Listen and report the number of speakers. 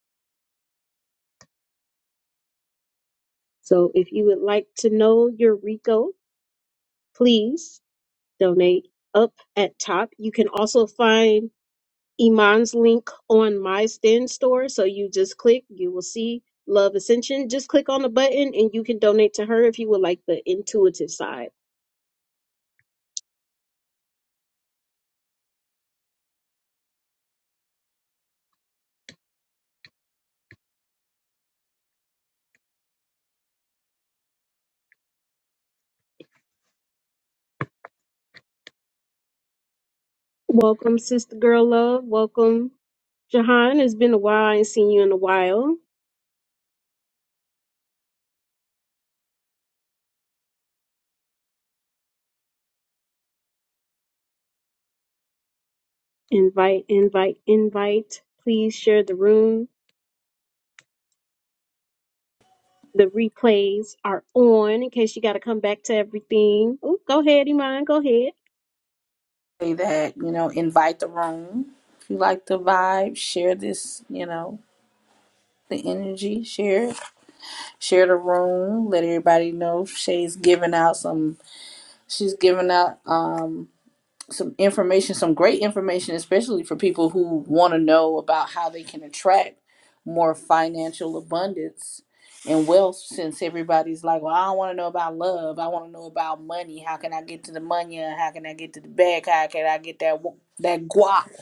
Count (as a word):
two